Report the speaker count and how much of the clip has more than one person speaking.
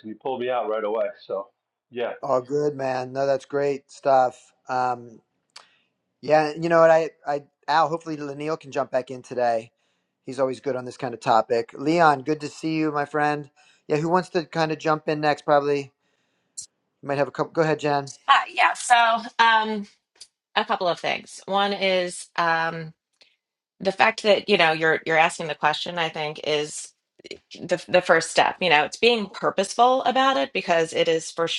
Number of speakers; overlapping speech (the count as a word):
three, no overlap